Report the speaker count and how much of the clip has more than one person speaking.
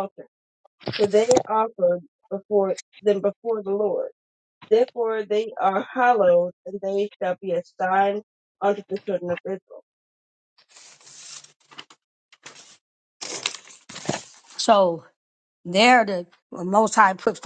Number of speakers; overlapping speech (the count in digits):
2, no overlap